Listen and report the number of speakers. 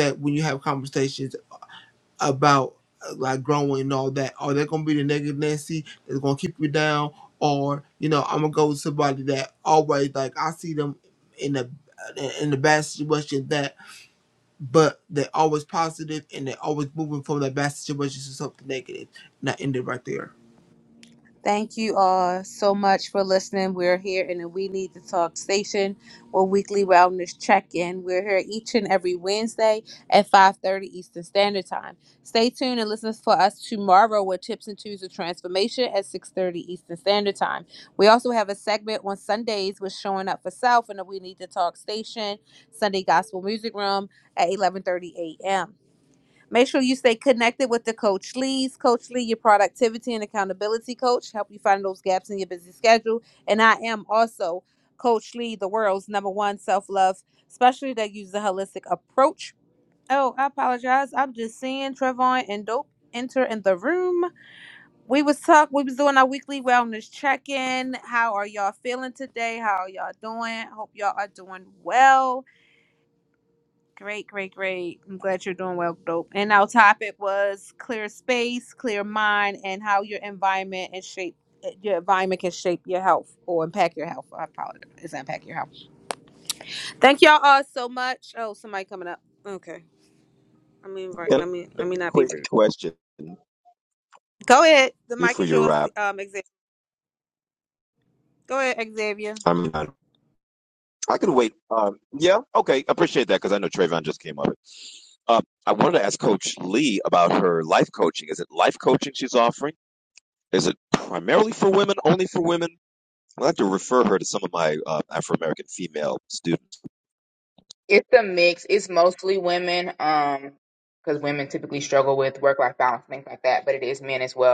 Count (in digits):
4